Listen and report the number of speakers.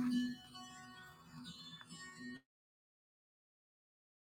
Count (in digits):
0